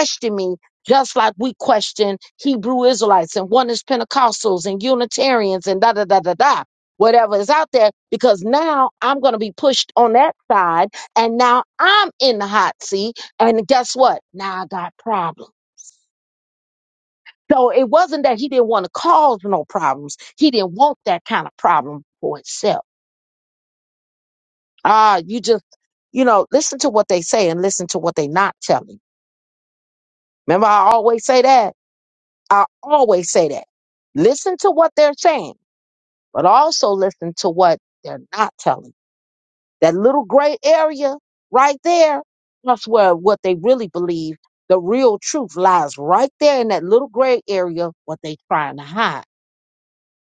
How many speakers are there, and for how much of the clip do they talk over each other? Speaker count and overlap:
1, no overlap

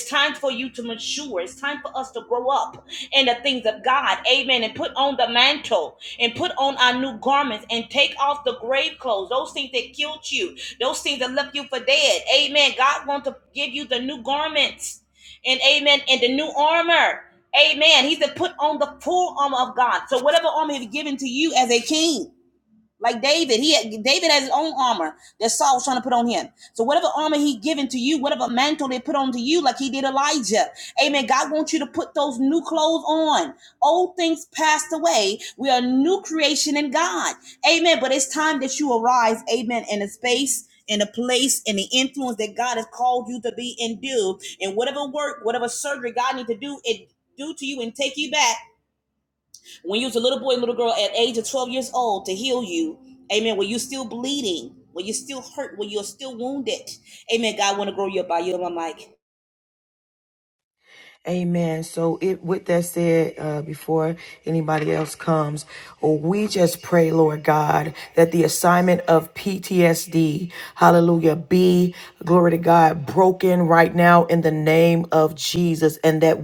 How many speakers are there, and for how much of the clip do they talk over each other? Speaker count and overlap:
2, no overlap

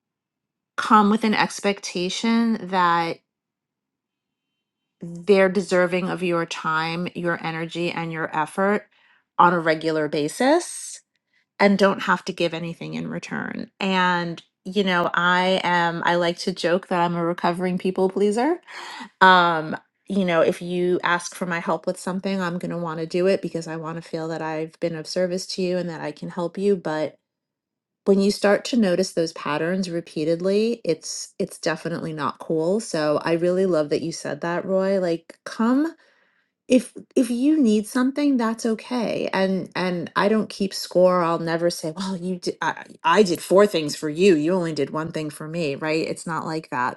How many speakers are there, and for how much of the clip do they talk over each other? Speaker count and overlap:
1, no overlap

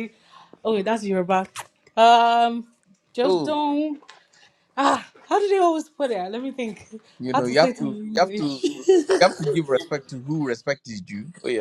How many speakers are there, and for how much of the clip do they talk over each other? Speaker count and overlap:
2, about 14%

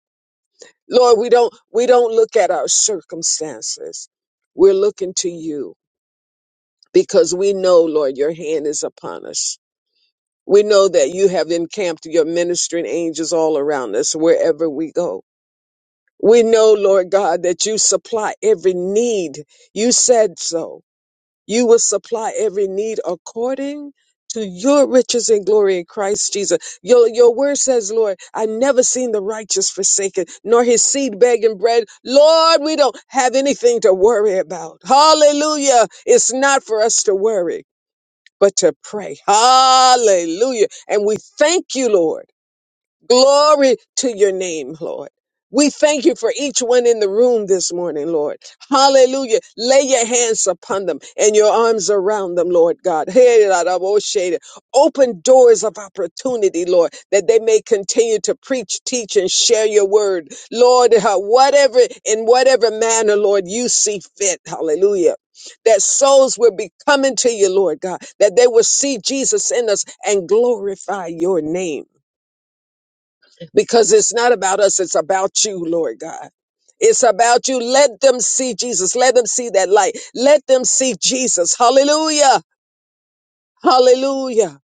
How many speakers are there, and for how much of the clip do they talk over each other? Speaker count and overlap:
1, no overlap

